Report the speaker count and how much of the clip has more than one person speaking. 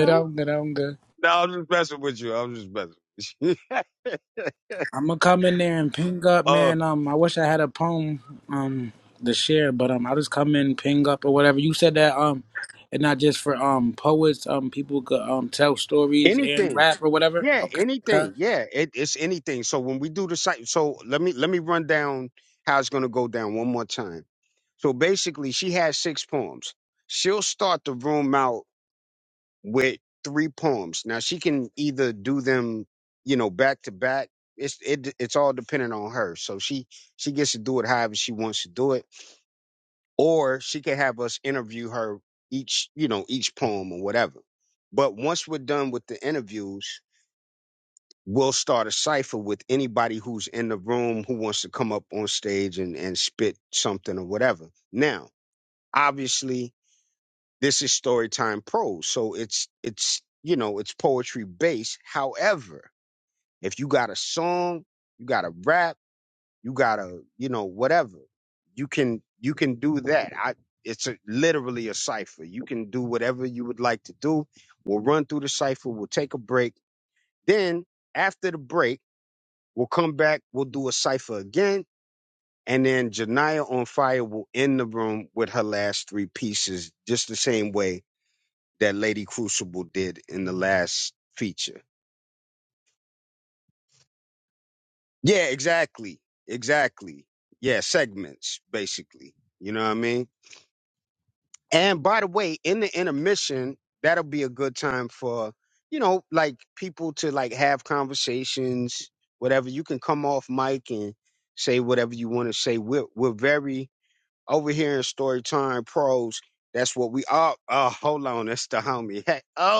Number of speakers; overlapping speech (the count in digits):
2, about 2%